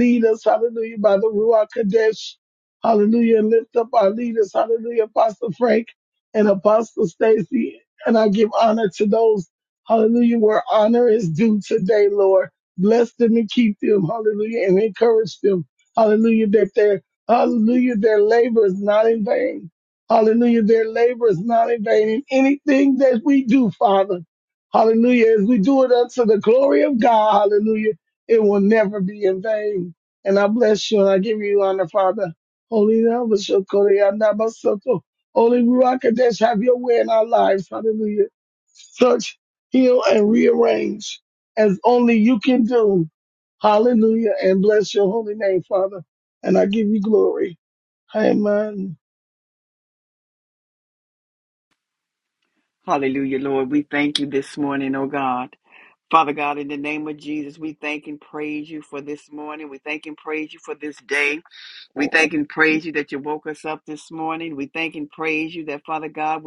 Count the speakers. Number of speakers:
2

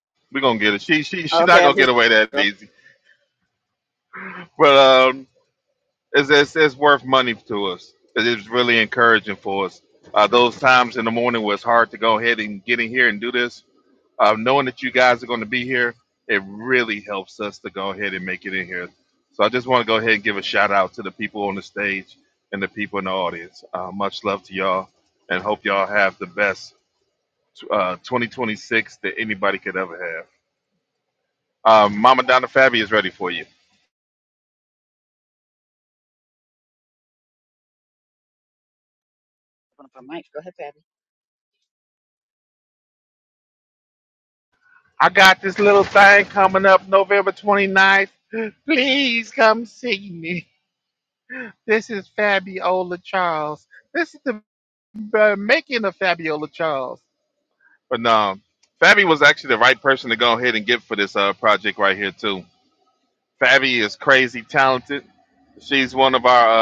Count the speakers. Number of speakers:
2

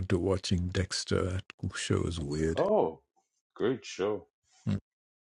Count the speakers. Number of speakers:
2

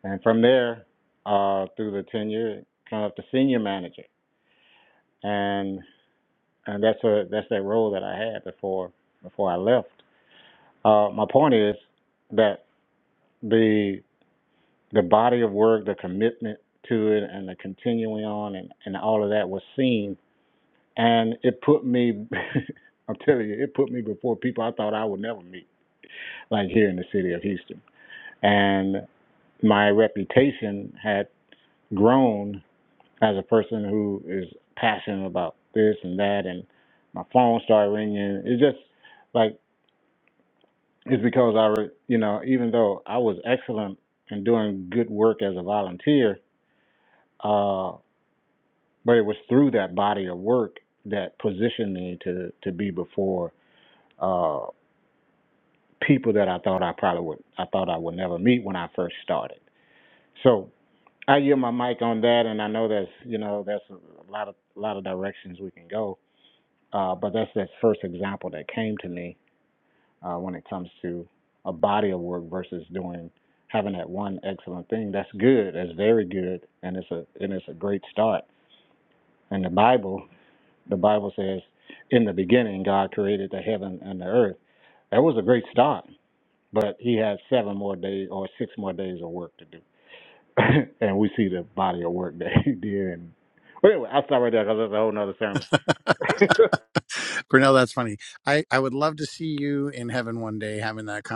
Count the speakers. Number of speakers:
2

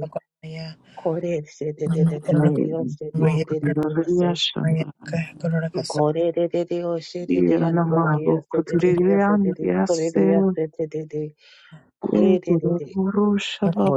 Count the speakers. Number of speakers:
3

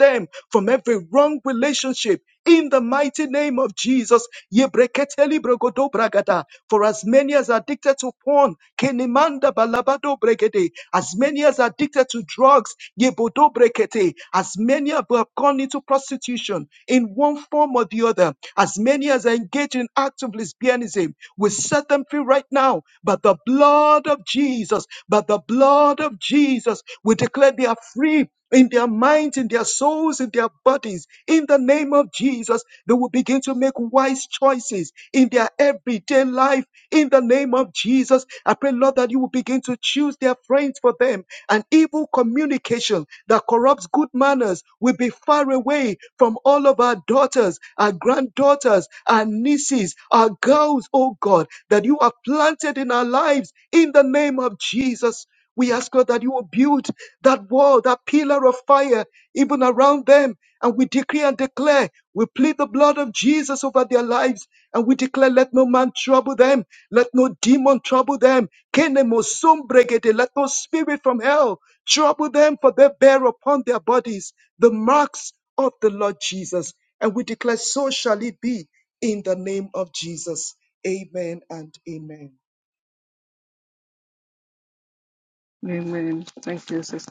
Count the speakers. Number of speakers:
2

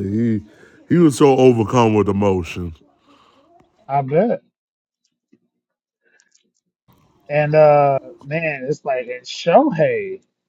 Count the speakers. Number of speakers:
2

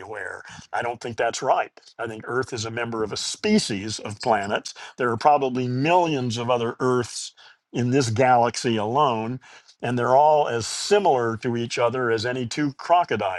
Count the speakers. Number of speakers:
1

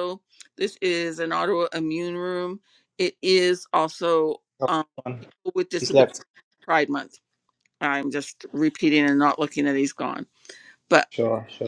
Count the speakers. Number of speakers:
2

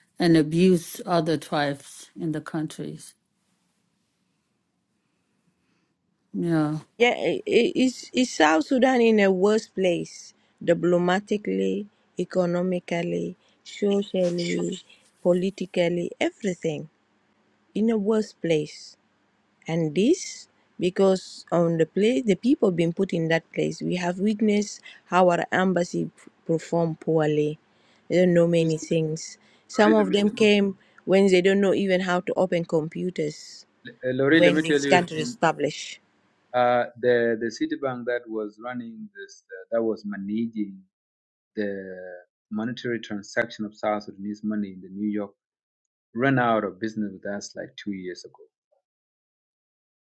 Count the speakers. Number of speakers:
3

